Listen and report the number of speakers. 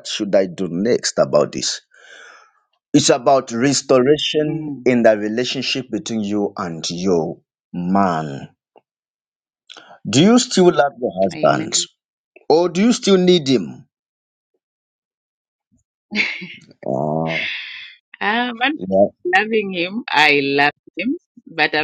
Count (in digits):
2